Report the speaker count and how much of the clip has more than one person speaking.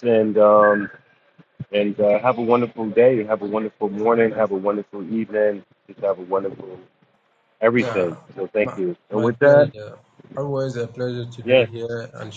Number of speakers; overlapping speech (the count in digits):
2, about 11%